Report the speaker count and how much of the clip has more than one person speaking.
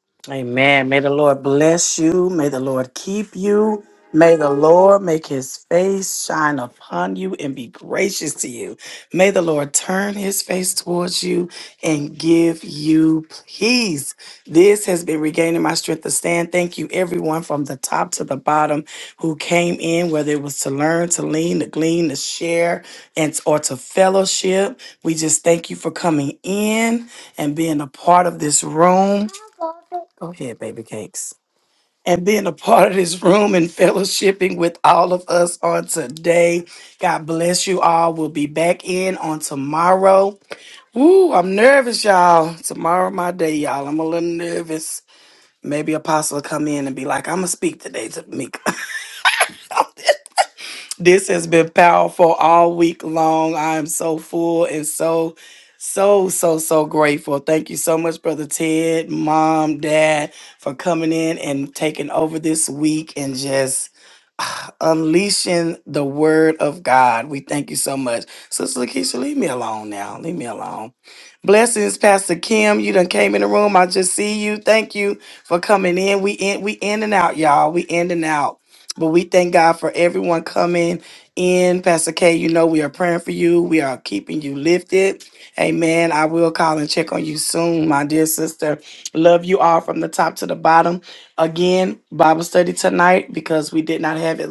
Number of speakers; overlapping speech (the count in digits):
1, no overlap